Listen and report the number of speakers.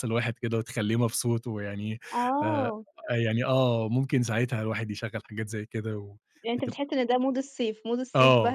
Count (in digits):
2